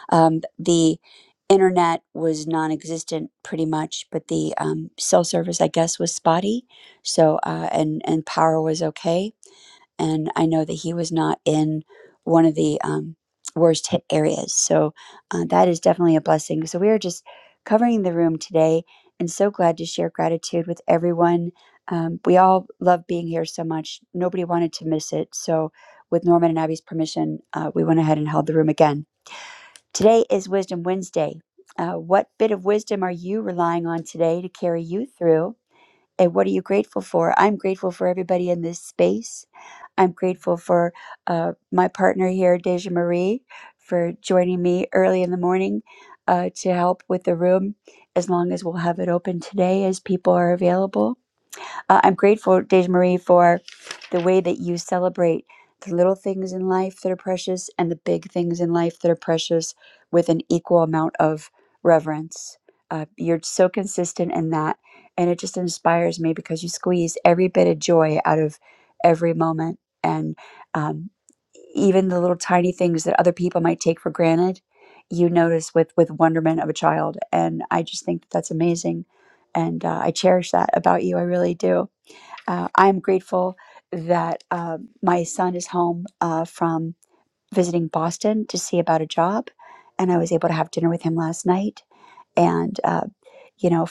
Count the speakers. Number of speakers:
1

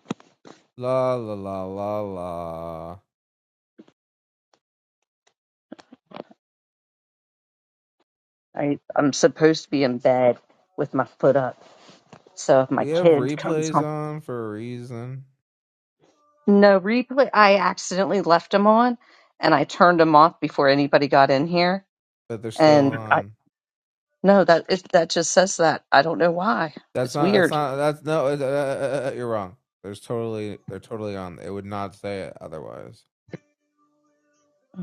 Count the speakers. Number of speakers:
2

